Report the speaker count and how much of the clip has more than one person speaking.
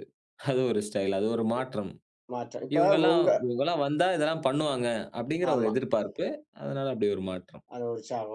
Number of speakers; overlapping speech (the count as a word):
two, about 11%